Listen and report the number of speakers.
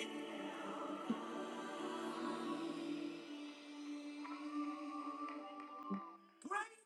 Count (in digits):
0